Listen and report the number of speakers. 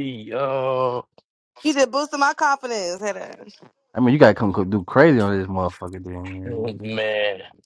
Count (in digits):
3